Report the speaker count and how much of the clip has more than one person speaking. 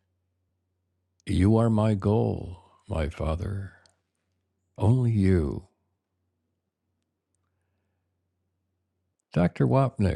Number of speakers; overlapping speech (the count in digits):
1, no overlap